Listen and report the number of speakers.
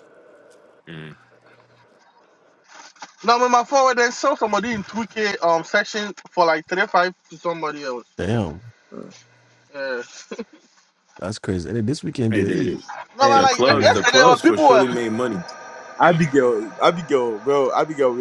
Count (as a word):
four